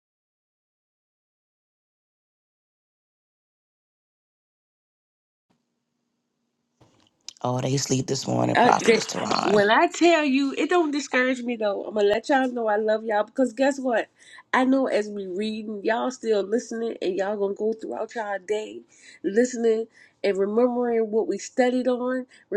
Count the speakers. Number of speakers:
two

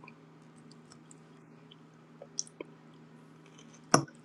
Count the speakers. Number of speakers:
zero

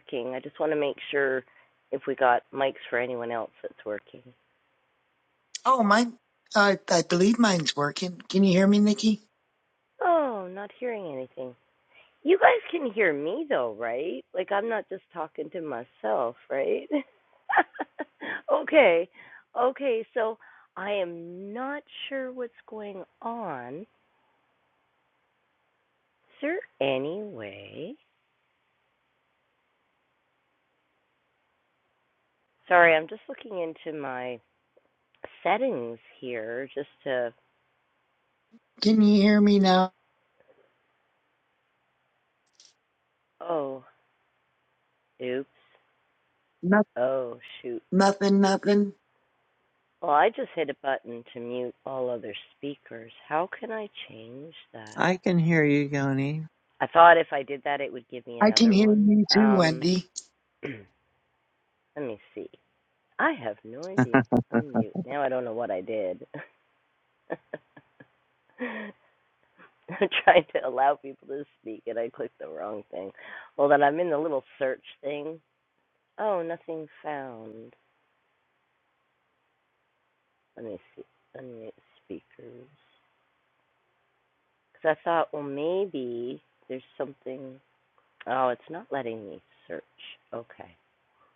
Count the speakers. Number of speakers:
three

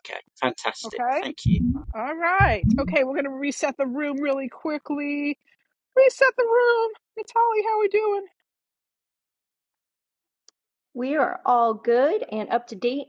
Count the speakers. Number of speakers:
three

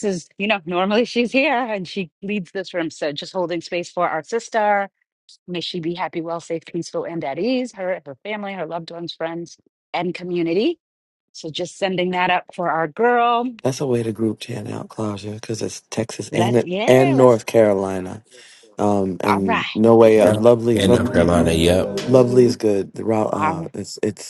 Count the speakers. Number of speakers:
three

